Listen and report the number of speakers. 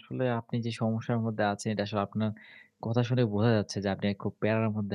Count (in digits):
1